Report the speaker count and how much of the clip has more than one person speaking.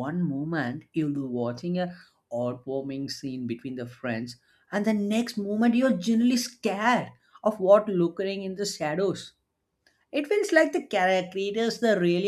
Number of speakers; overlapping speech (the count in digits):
1, no overlap